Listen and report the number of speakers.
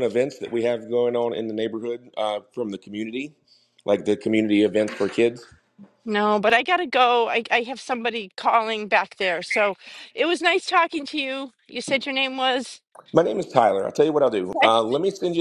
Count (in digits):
2